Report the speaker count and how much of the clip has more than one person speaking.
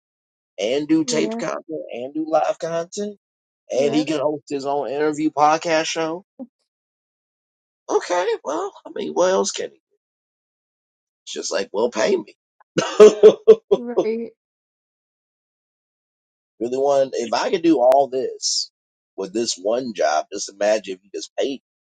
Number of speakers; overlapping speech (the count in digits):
2, about 3%